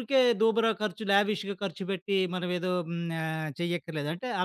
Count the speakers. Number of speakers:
one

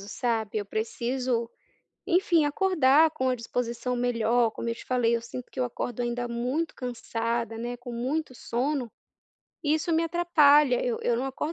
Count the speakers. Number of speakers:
one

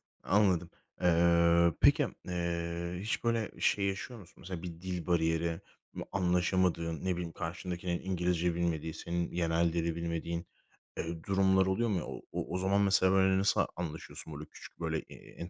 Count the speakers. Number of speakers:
one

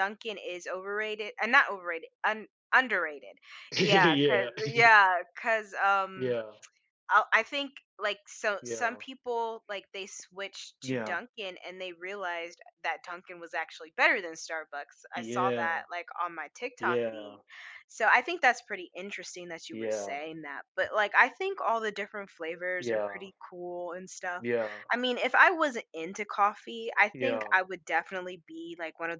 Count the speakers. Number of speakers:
two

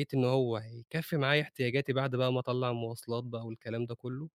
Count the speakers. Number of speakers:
one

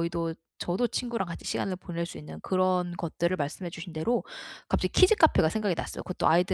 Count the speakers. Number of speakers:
one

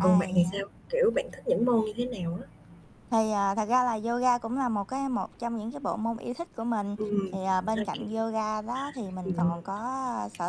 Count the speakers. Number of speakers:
two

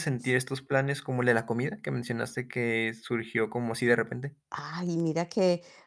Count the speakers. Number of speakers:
two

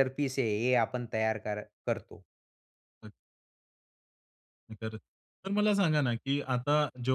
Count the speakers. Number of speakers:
two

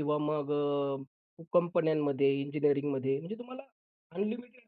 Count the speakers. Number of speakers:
one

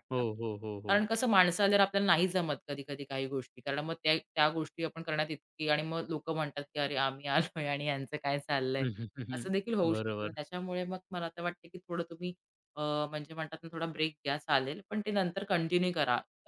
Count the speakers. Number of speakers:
two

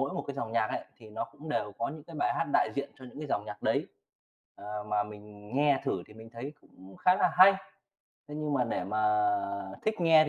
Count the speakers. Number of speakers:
one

